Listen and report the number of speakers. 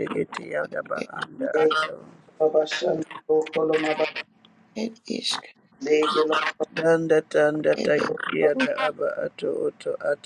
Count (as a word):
three